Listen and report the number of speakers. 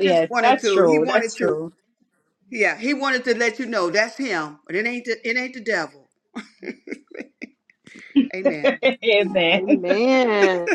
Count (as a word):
three